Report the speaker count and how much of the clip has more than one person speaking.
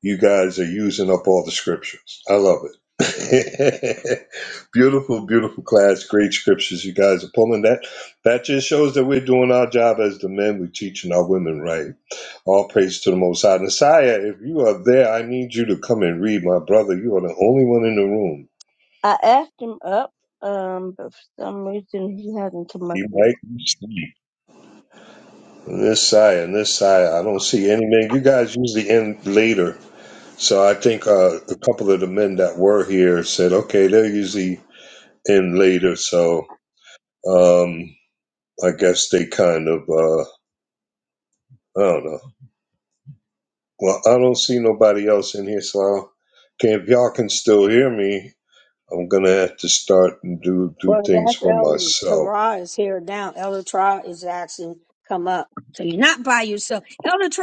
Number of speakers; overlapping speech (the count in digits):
3, about 3%